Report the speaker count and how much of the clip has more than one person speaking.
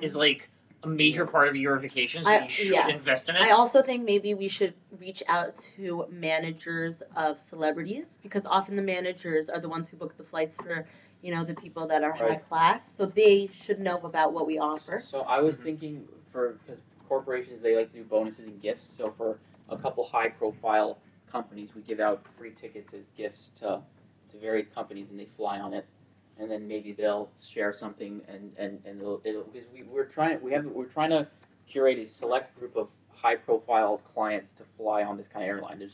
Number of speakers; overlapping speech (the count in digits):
3, about 6%